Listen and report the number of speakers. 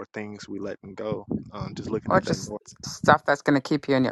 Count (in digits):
2